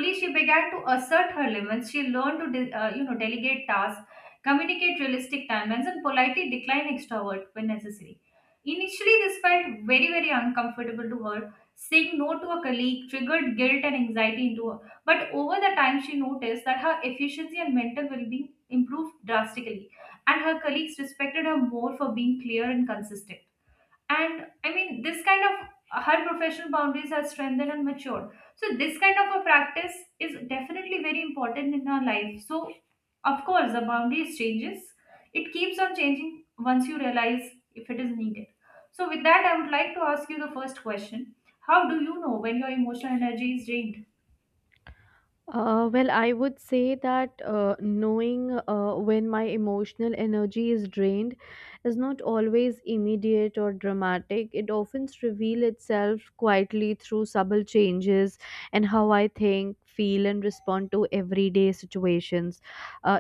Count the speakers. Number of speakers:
two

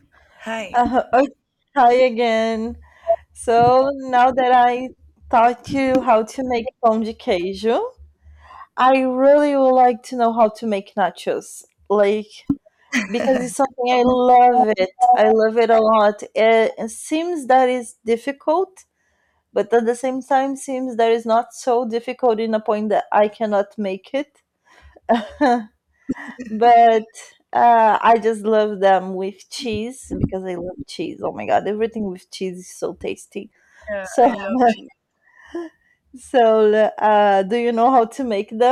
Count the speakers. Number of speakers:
two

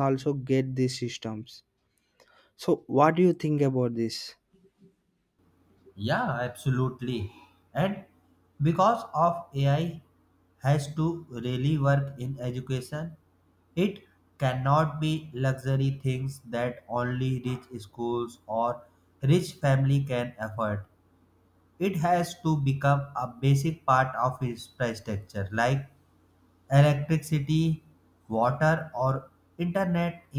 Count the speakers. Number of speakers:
two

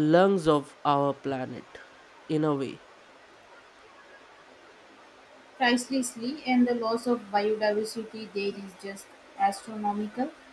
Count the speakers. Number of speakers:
two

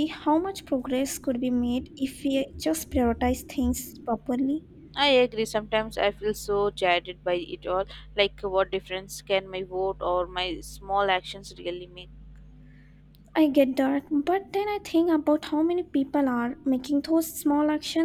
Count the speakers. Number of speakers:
two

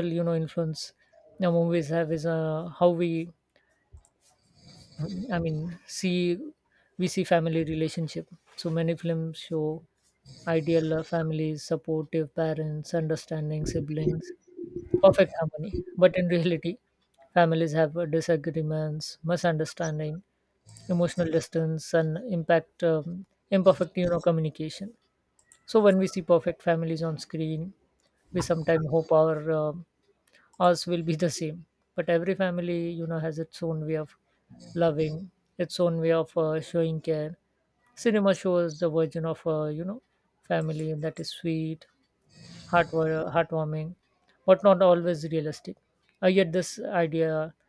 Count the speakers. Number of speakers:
one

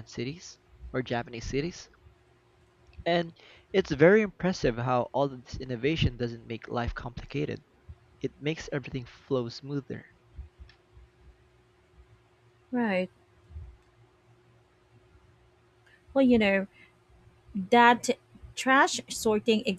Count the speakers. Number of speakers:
two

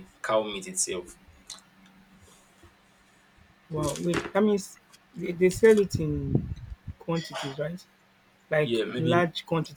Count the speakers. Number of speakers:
two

